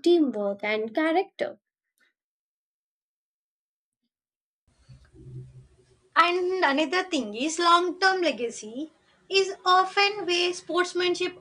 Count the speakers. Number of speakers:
2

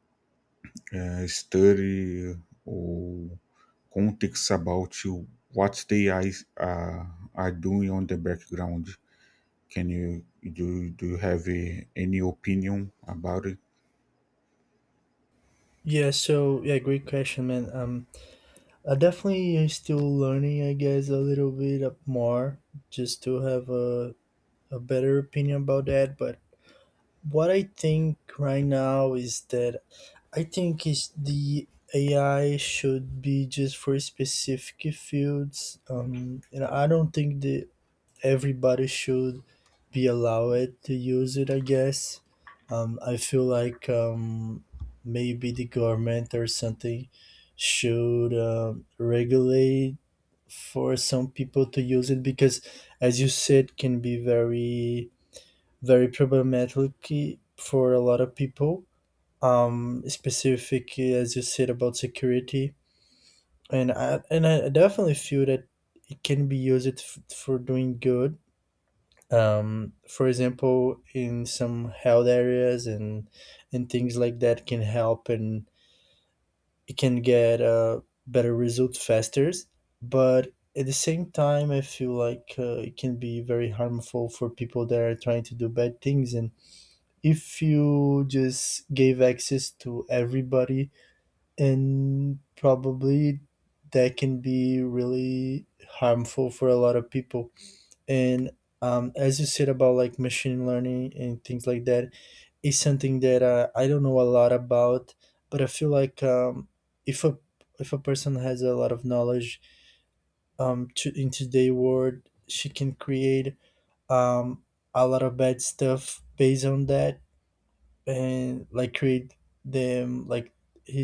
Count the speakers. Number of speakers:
2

